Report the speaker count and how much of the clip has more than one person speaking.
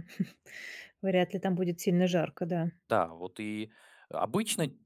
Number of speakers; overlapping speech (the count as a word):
two, no overlap